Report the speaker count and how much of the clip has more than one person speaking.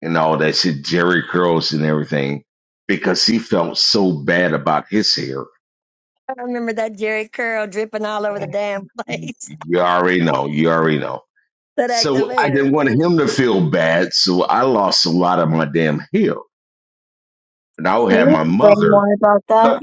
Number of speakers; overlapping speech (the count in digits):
3, about 9%